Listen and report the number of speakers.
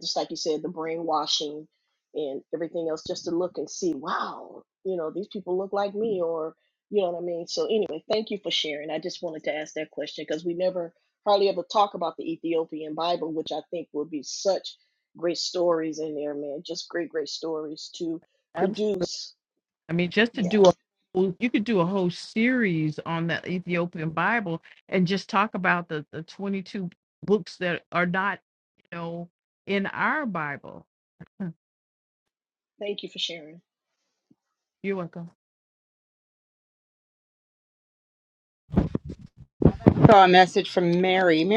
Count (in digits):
3